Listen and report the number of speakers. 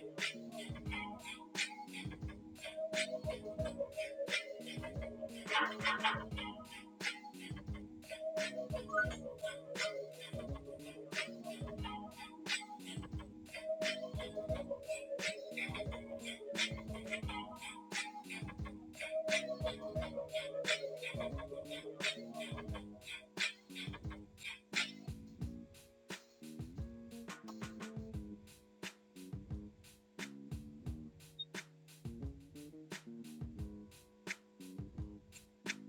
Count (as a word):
zero